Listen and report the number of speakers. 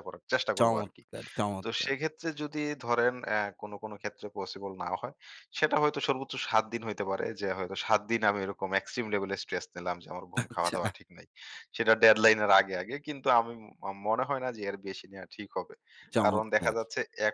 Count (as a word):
two